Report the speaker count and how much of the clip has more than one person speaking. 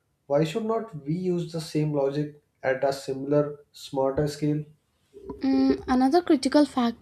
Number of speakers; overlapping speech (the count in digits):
2, no overlap